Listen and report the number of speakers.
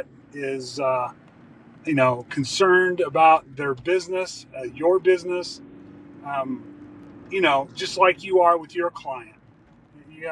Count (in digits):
1